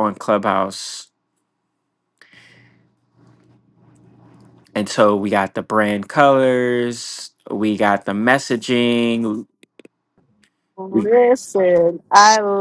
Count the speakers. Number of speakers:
2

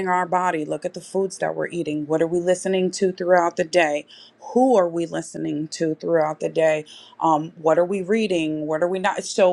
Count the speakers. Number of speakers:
1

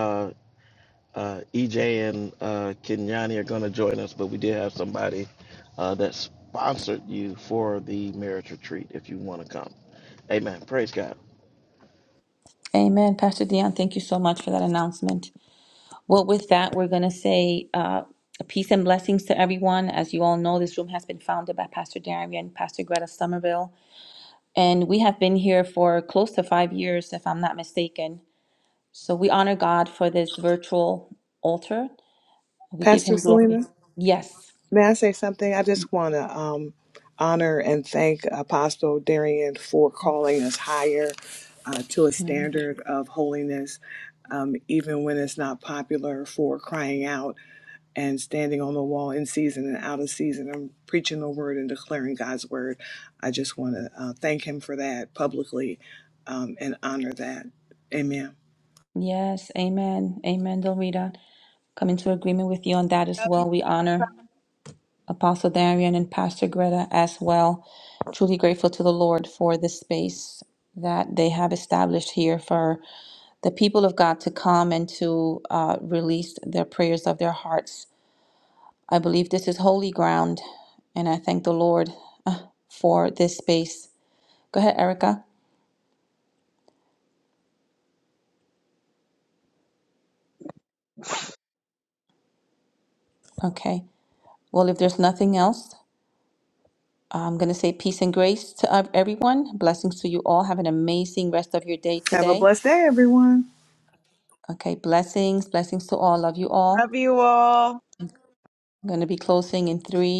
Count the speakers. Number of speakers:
4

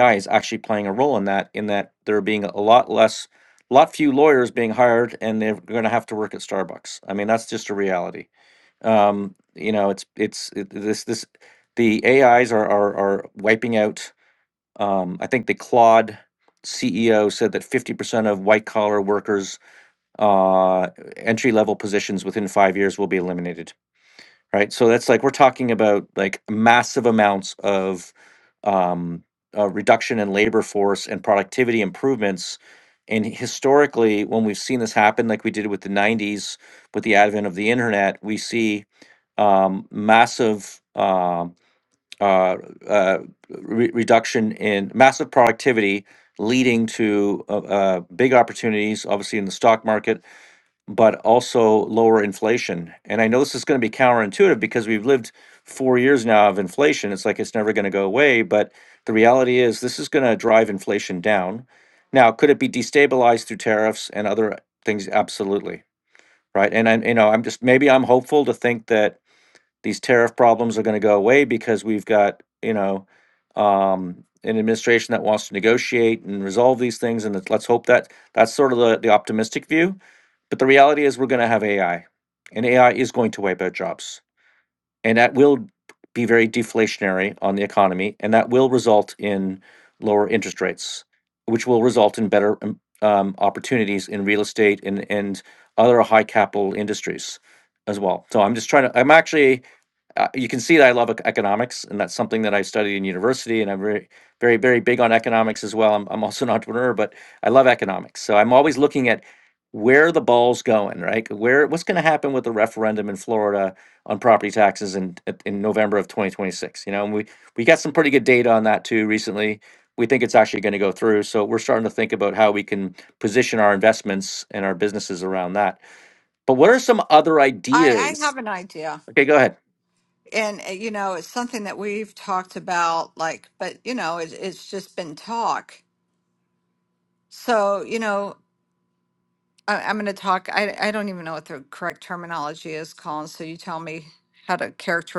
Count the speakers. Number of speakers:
2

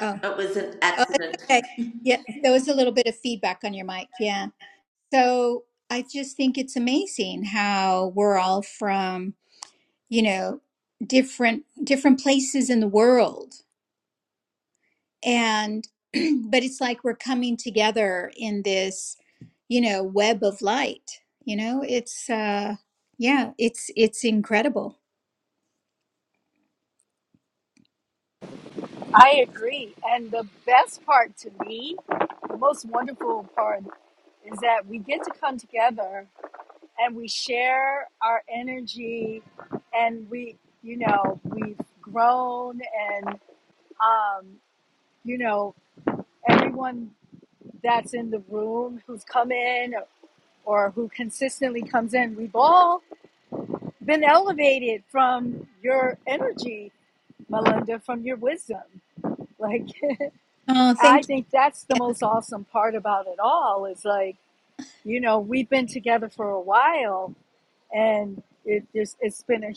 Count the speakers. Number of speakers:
3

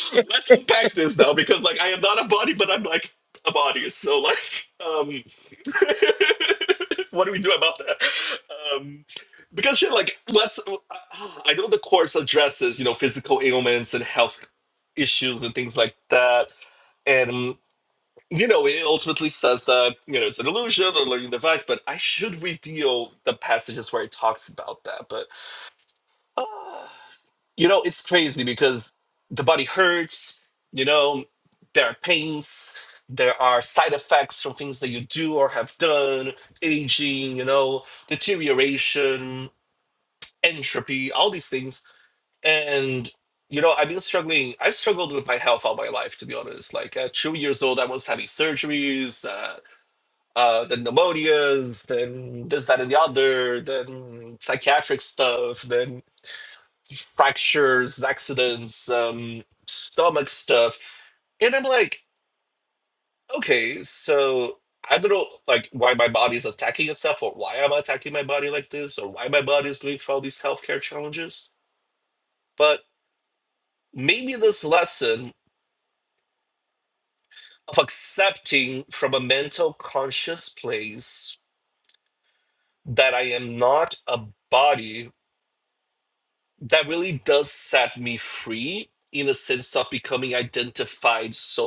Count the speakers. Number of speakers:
1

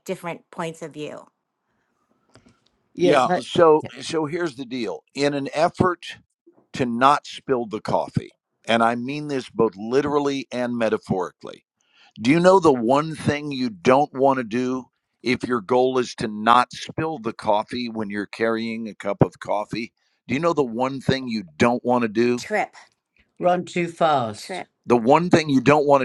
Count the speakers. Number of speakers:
3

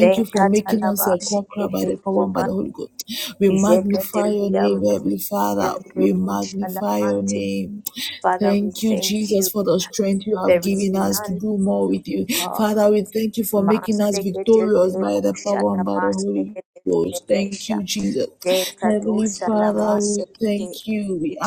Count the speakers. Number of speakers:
2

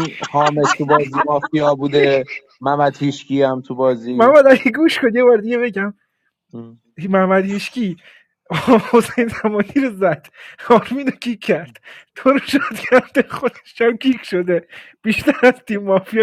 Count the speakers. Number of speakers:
2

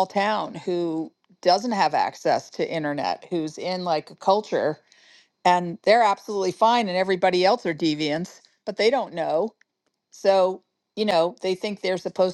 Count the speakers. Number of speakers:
1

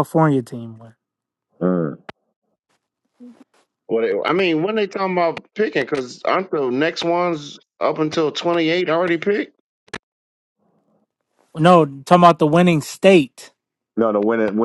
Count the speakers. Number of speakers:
3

